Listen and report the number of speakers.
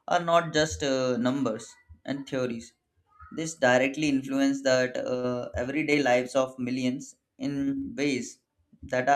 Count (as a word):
one